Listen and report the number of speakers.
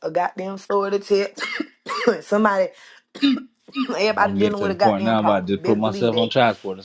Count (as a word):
two